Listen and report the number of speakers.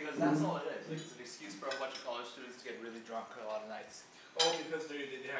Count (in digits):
2